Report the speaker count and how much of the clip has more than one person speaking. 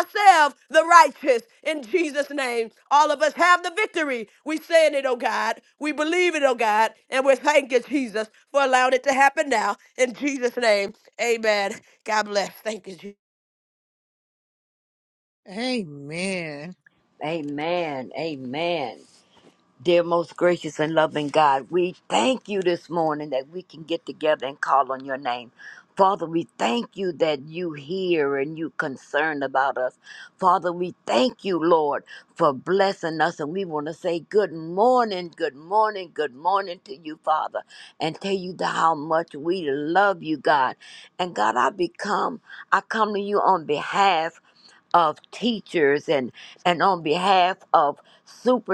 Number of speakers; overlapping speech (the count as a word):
three, no overlap